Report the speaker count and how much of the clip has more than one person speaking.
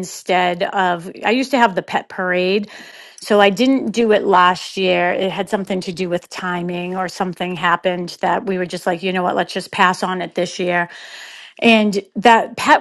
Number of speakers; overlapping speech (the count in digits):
1, no overlap